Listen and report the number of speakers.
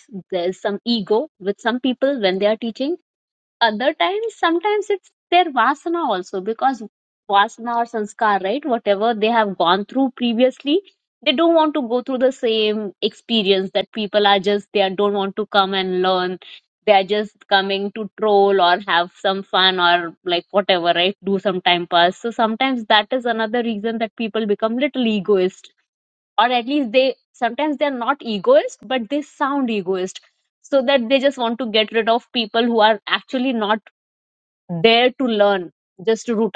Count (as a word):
one